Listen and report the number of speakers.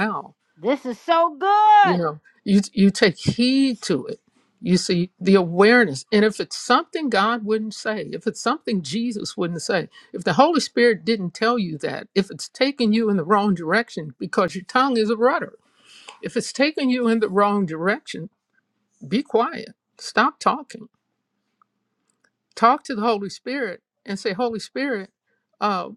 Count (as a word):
two